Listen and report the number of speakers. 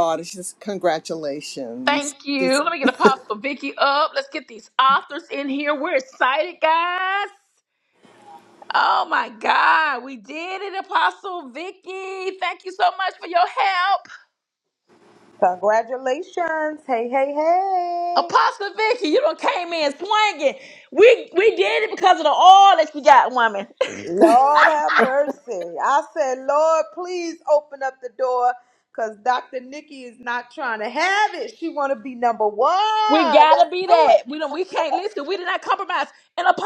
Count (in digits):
3